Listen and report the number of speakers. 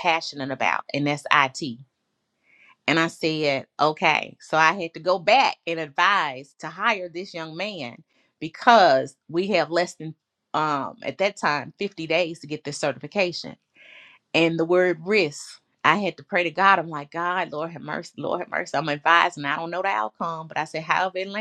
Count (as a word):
one